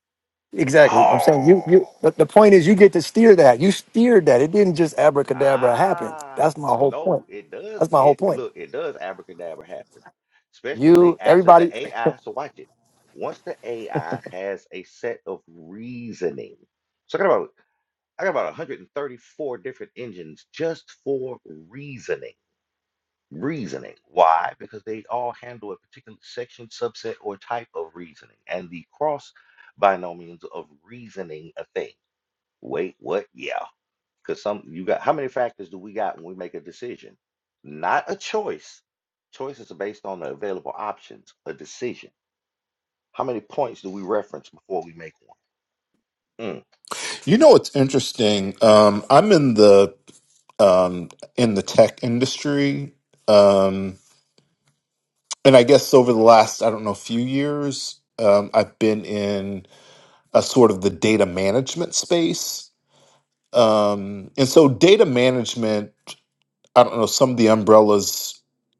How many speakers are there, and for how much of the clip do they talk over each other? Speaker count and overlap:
3, about 6%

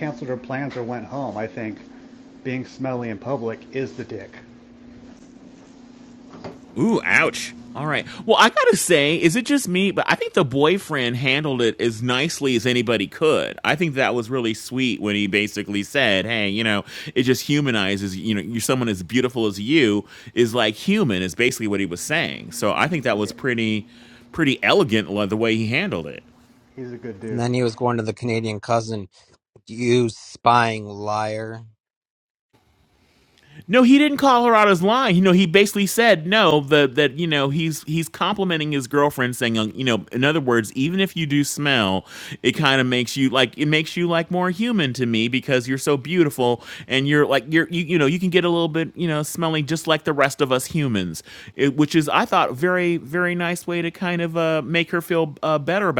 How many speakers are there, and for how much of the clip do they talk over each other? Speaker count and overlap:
3, about 1%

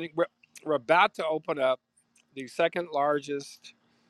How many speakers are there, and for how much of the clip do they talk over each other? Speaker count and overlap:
1, no overlap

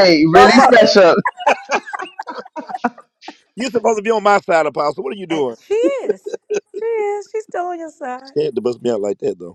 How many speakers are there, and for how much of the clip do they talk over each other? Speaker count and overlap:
3, about 5%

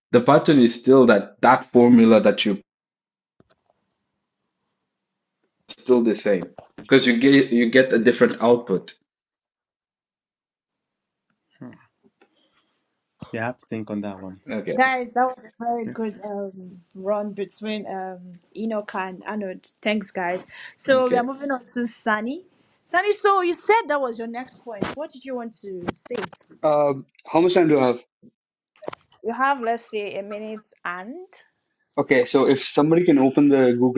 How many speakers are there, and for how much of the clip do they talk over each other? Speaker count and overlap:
4, about 1%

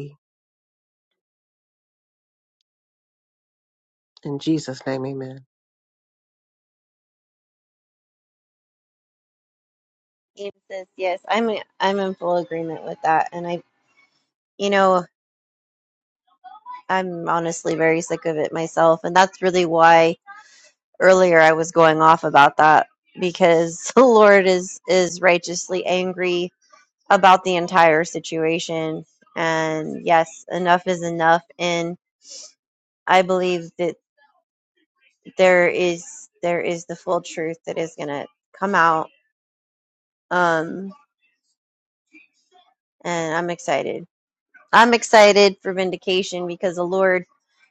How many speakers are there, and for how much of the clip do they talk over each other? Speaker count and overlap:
2, no overlap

